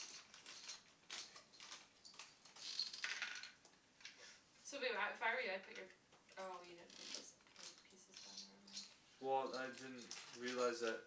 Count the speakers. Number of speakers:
two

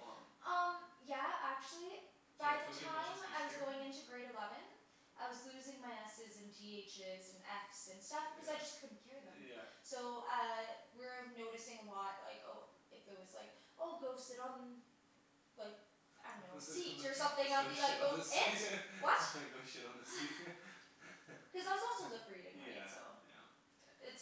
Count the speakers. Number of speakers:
two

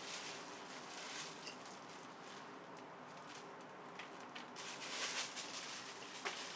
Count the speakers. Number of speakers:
zero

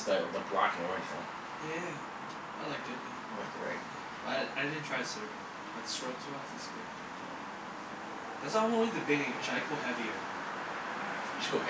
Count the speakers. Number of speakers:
two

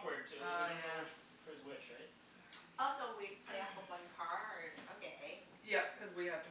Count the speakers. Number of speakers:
three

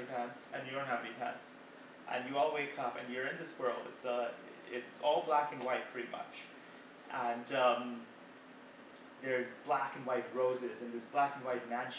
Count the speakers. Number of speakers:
one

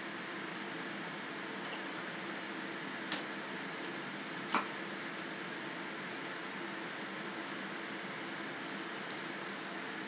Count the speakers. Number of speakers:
zero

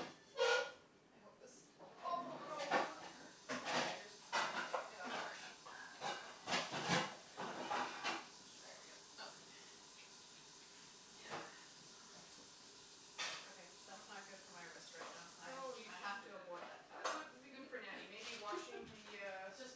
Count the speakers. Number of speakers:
two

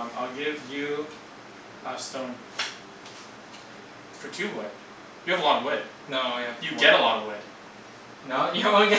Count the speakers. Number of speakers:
two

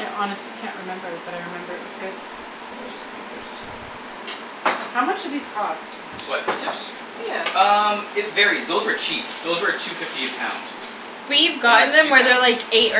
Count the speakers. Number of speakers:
three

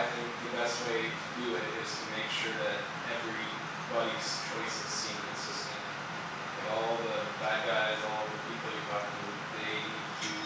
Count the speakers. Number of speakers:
one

